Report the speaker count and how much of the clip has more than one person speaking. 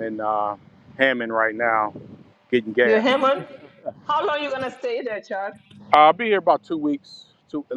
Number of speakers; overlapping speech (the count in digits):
2, about 4%